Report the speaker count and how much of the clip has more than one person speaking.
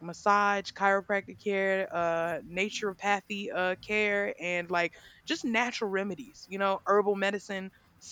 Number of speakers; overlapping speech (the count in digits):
1, no overlap